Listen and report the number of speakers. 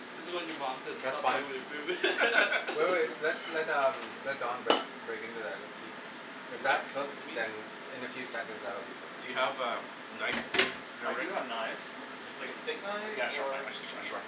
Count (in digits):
4